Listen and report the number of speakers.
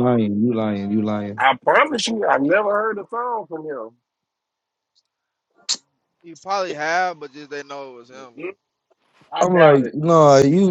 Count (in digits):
3